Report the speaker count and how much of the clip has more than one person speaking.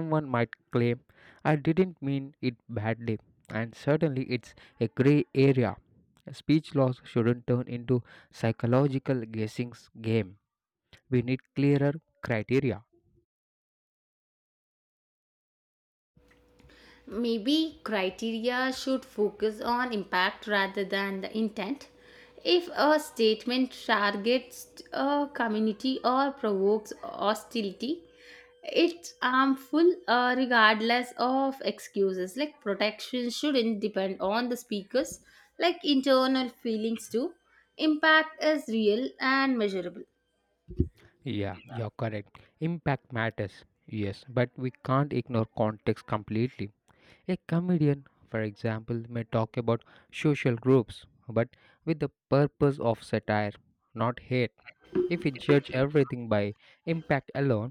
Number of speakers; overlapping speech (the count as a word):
two, no overlap